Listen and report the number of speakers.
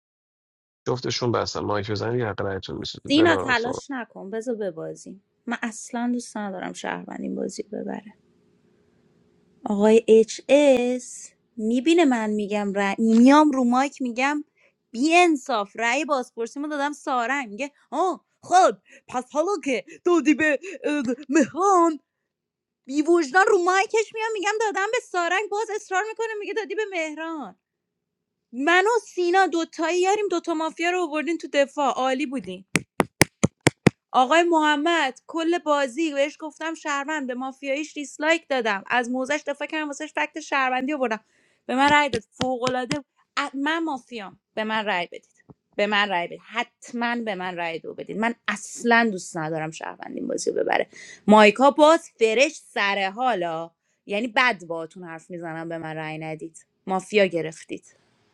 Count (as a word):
two